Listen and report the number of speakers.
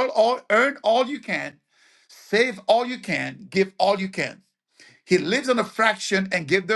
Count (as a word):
one